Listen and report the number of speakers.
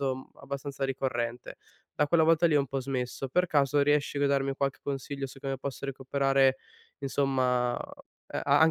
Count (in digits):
1